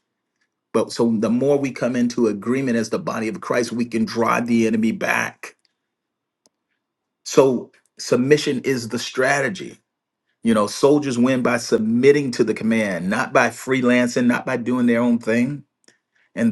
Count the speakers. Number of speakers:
one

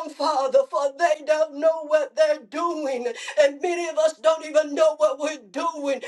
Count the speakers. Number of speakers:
one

